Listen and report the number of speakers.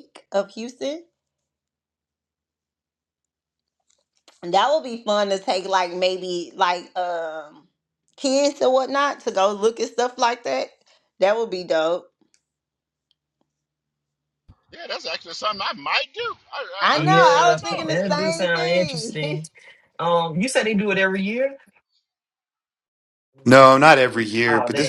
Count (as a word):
four